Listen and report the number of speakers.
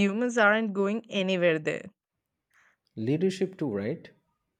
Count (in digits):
2